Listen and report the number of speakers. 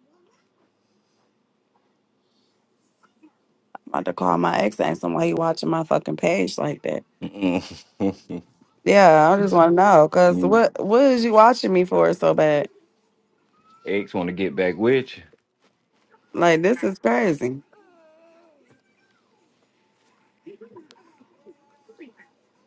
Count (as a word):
two